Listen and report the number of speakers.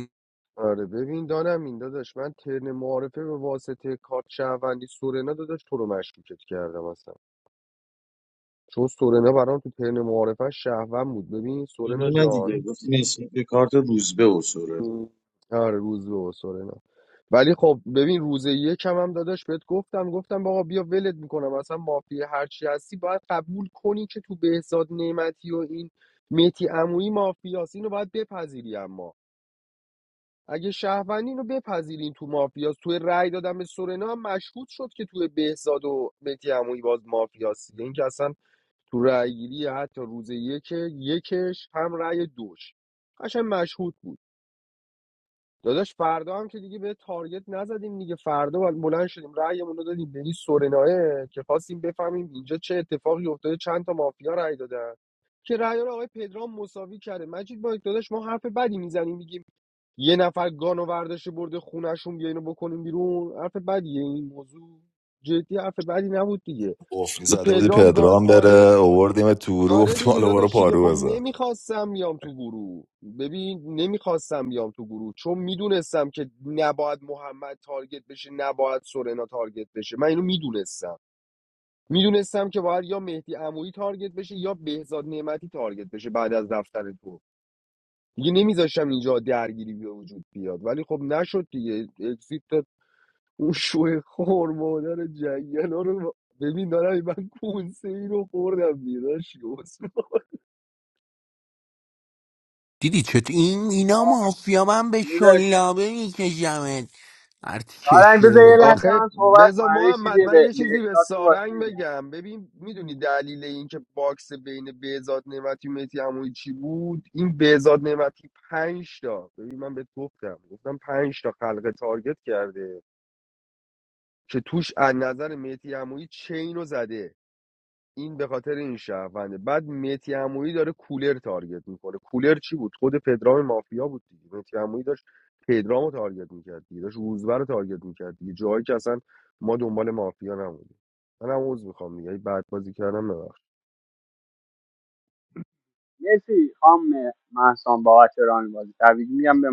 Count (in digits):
5